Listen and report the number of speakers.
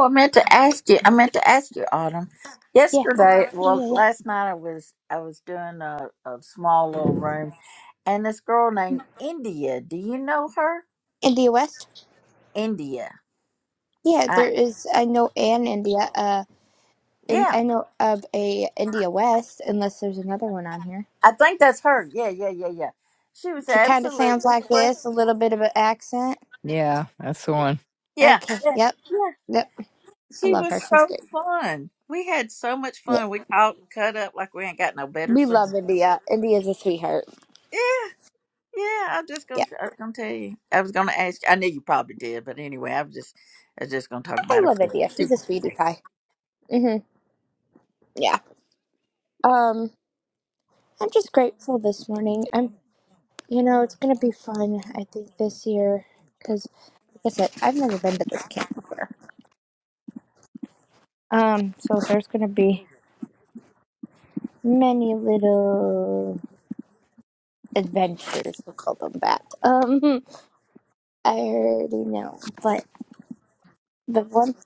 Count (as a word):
three